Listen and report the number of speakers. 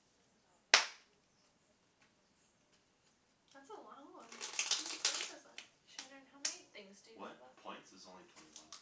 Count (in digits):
3